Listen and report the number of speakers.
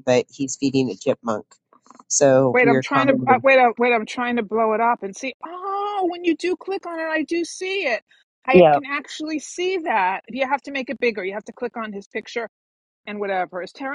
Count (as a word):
two